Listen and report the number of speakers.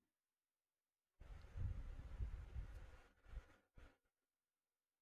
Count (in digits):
0